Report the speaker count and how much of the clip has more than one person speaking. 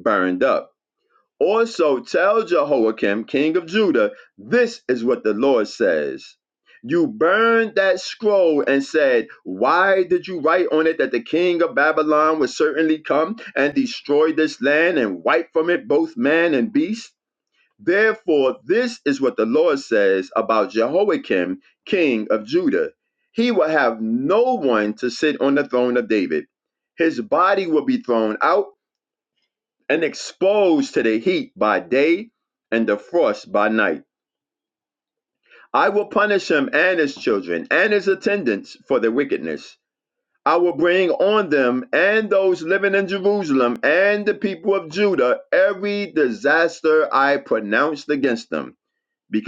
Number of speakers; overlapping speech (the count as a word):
one, no overlap